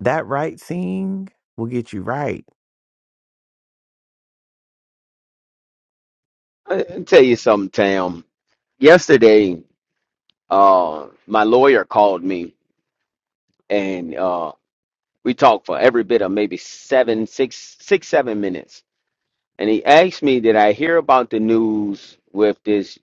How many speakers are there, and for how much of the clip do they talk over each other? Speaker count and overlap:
two, no overlap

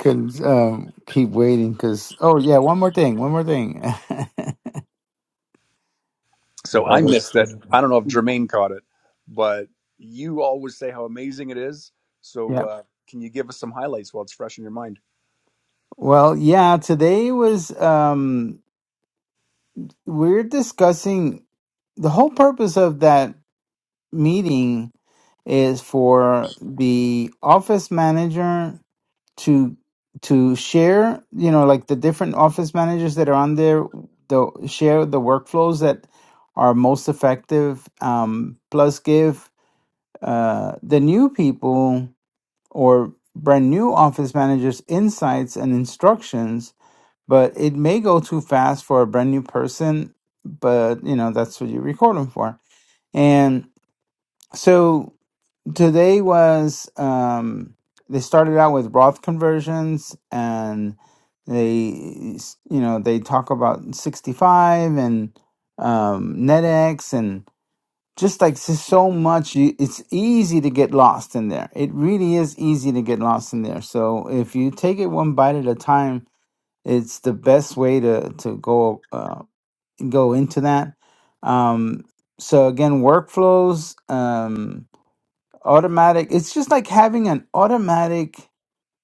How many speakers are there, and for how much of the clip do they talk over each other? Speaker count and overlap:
two, under 1%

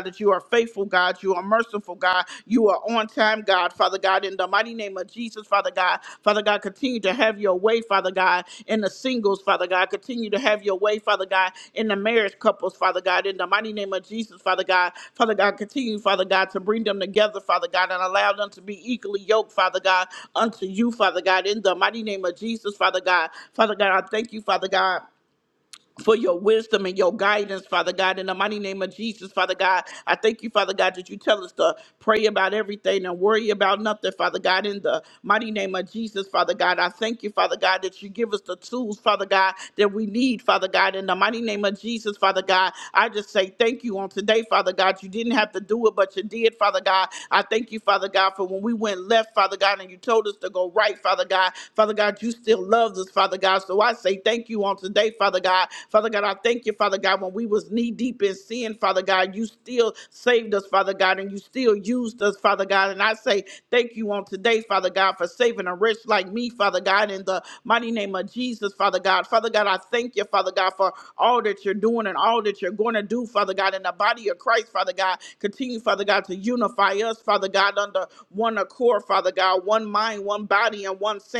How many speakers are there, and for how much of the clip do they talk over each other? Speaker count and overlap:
one, no overlap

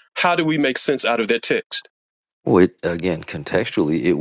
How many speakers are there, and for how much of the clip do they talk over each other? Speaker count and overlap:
two, no overlap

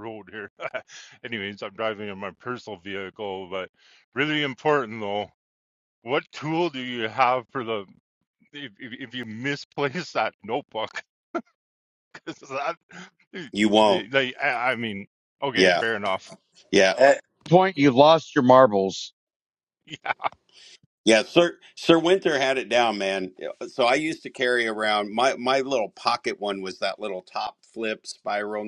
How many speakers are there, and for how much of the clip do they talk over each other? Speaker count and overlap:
three, about 1%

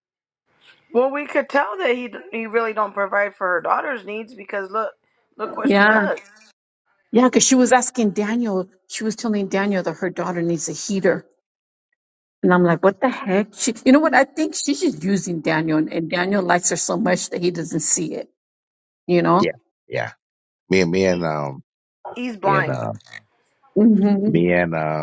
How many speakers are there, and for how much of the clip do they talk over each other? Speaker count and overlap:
three, about 4%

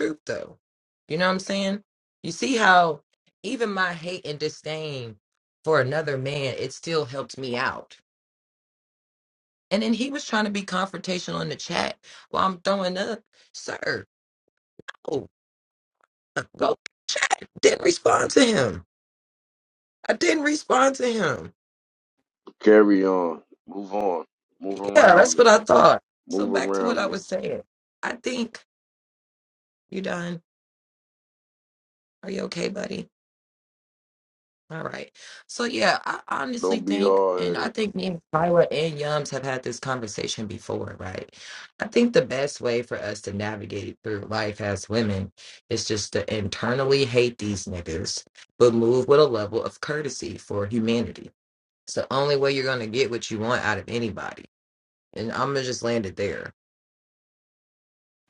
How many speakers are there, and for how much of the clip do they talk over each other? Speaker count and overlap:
two, about 4%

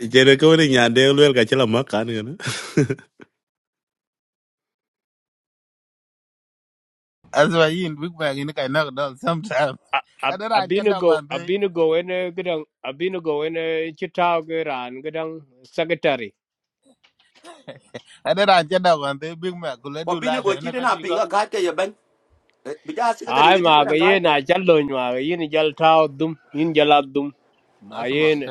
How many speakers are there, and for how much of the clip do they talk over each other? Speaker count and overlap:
four, about 13%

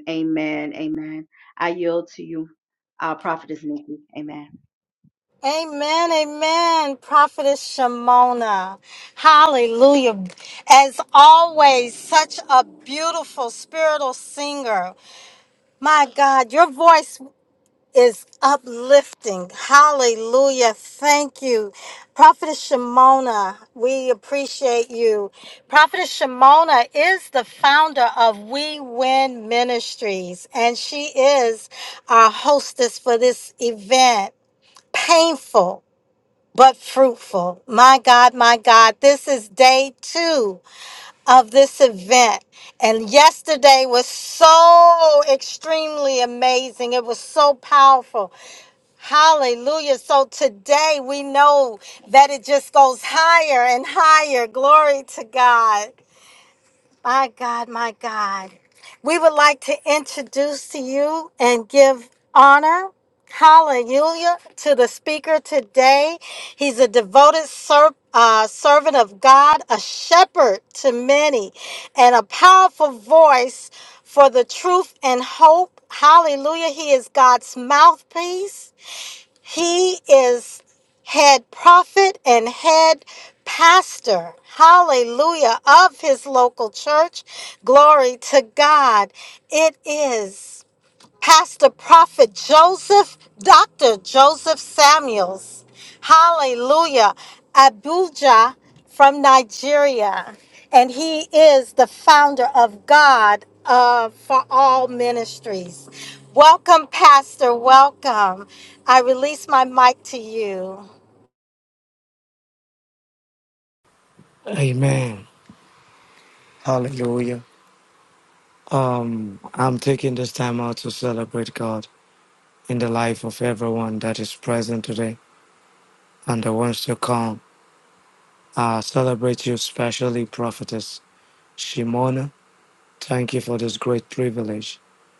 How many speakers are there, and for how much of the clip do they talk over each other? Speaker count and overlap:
three, no overlap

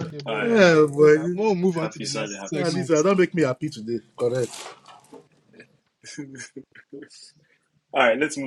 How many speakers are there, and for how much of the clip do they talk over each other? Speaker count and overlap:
three, about 26%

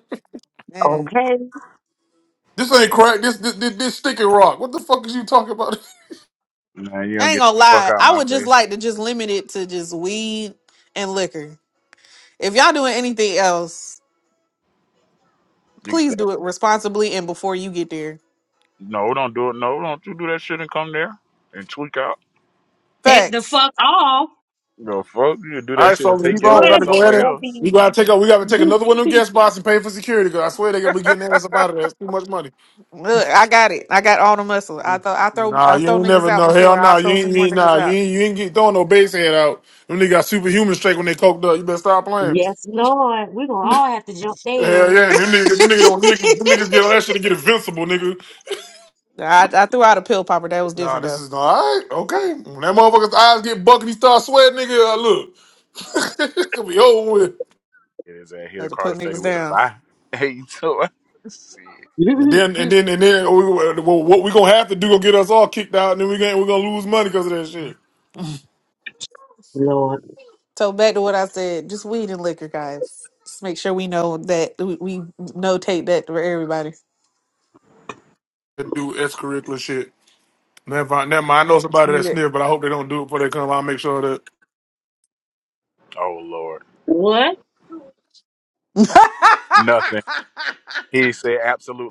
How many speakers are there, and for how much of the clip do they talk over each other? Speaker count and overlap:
four, about 9%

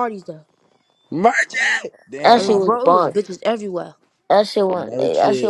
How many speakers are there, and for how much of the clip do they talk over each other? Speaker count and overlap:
three, about 31%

